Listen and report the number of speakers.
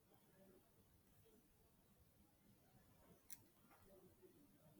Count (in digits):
0